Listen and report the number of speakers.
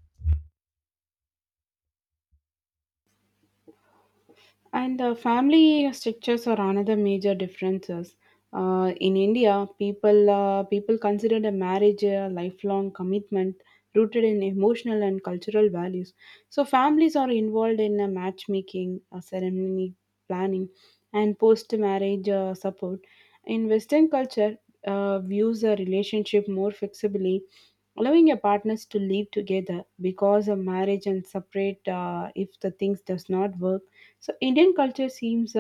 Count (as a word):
one